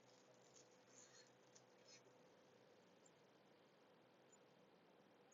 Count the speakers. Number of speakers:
0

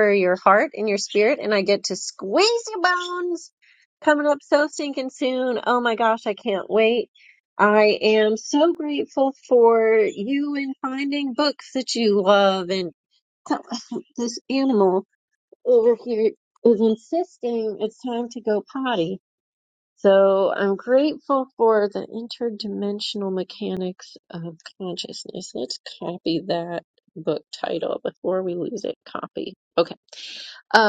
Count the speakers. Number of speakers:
1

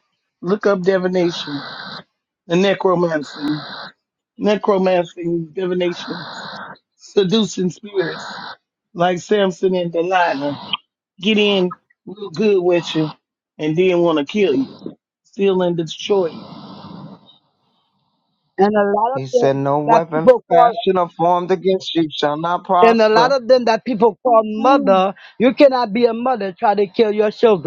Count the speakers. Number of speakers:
3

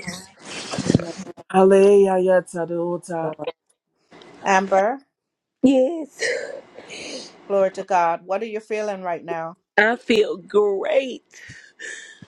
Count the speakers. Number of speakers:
3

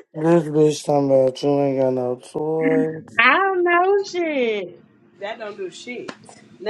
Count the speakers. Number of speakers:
3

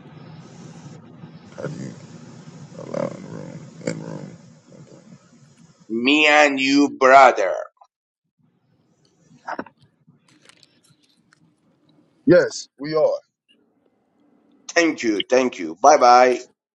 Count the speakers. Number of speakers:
2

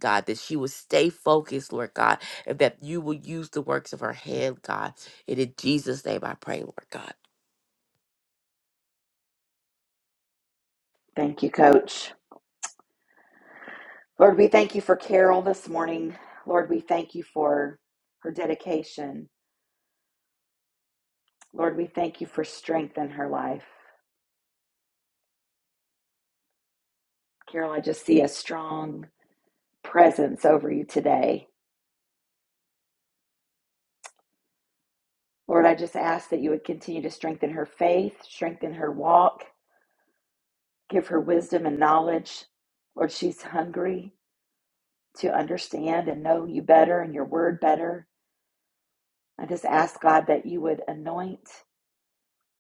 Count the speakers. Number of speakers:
2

